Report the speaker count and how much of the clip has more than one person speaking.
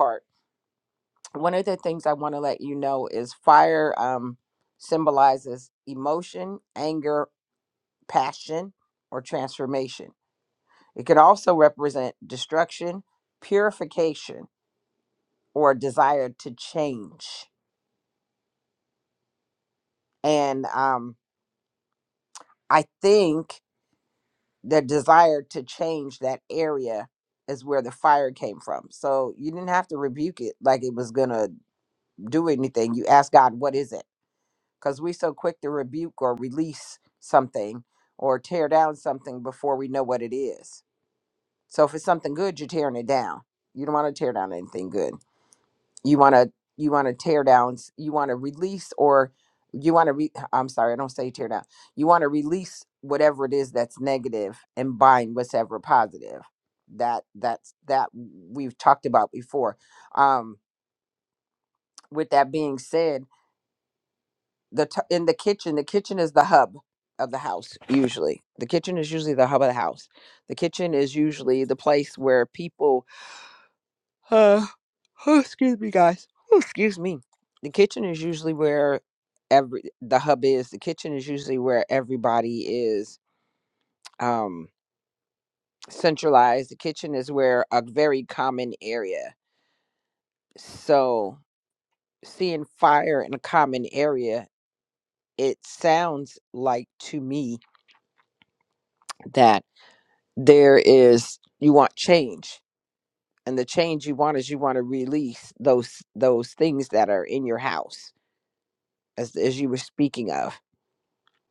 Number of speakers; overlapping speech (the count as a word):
one, no overlap